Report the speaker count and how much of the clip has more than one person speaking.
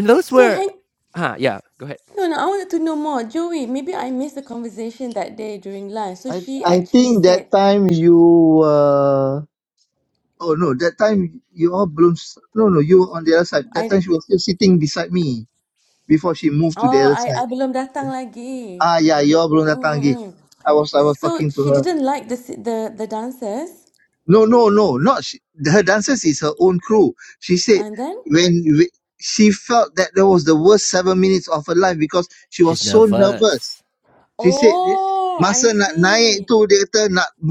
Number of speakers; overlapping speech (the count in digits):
3, about 16%